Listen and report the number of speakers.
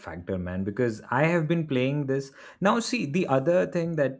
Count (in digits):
1